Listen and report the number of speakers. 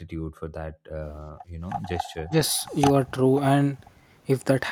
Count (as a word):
two